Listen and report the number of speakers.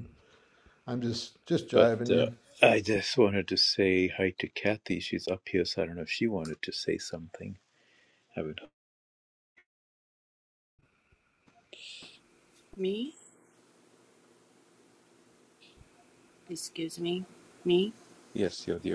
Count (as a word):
three